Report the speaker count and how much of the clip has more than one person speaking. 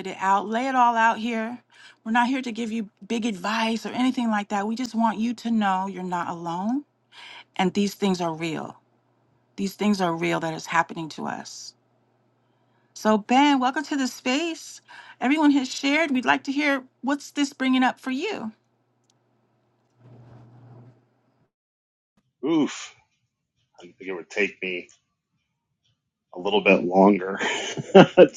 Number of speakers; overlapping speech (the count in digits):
2, no overlap